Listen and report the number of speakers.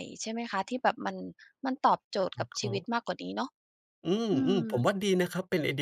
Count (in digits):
2